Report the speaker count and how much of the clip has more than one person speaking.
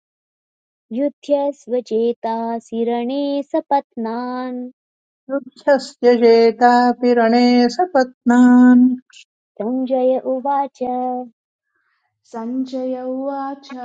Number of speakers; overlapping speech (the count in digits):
3, no overlap